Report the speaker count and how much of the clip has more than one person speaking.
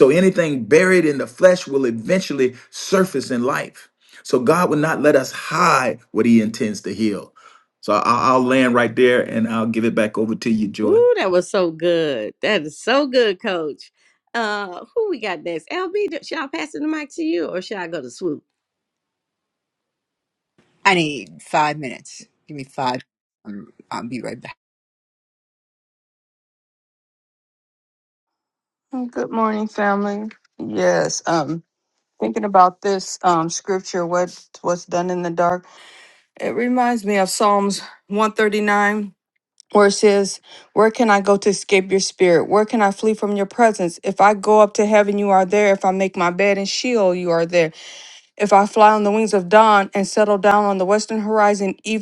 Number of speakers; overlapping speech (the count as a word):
four, under 1%